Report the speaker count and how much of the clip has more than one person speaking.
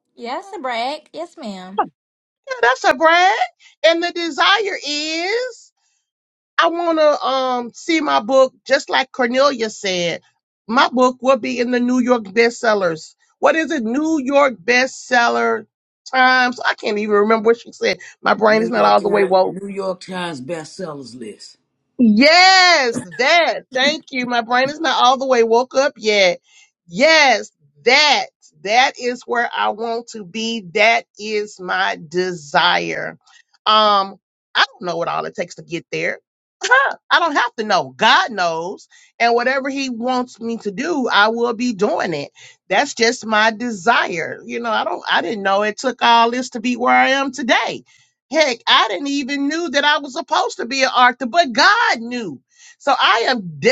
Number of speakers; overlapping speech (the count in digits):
3, about 2%